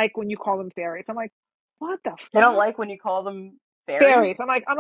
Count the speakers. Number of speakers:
two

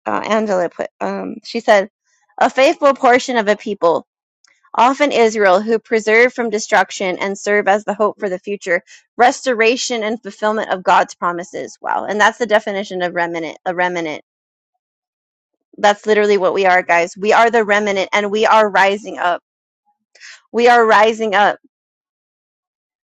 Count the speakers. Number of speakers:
one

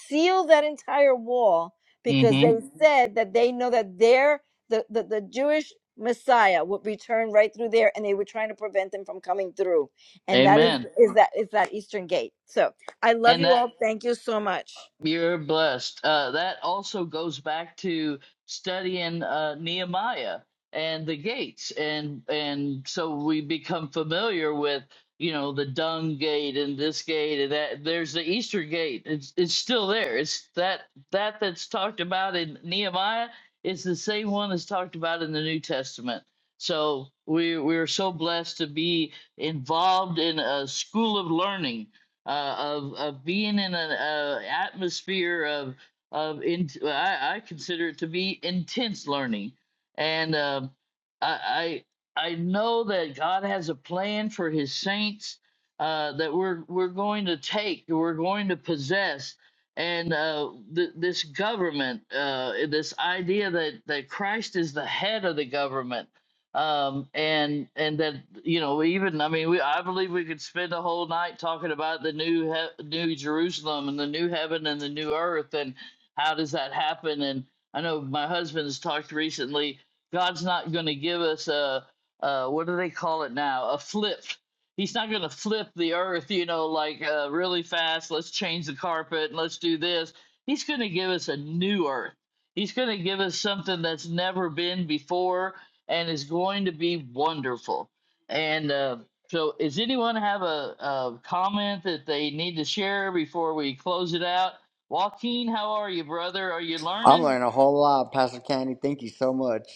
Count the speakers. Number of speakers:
three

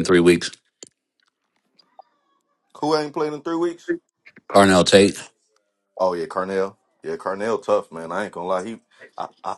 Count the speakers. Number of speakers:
two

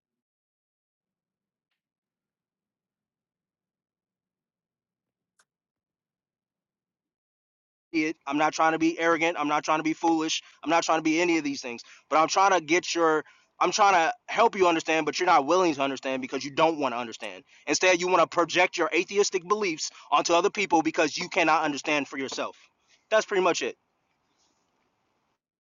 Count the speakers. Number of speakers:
one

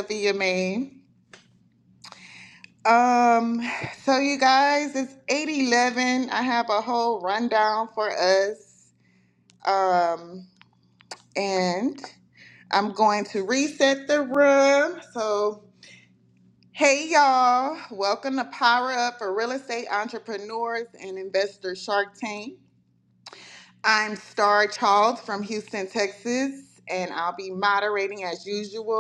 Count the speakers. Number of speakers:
one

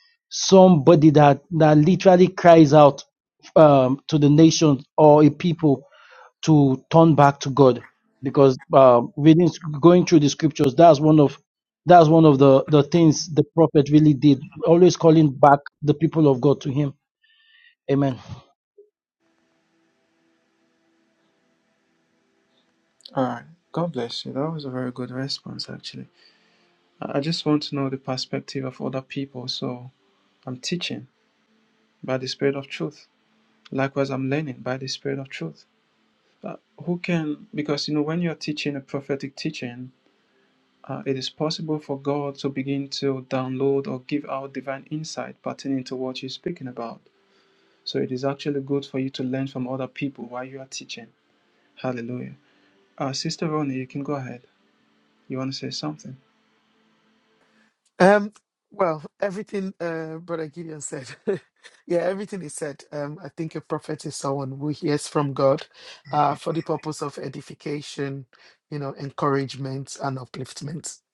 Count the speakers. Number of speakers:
three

